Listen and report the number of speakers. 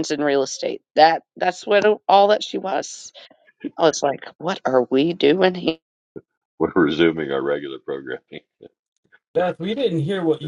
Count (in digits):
3